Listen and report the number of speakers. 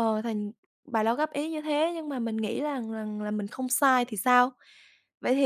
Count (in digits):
1